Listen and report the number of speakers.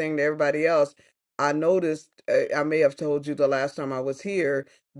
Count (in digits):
1